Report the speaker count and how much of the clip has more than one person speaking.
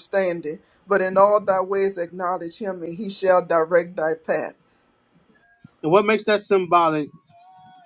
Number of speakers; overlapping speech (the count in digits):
2, no overlap